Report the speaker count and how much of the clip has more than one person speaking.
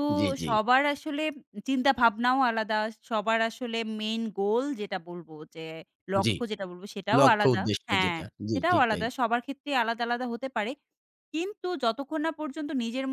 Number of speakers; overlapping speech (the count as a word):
two, about 15%